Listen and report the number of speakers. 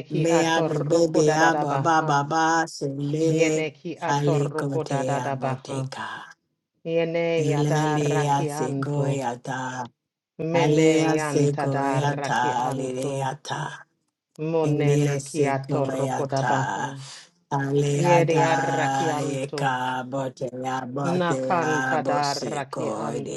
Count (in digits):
2